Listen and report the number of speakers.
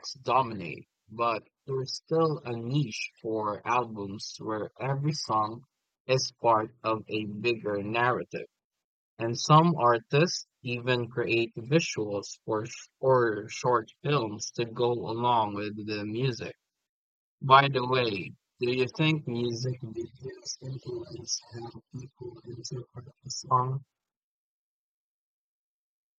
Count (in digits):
1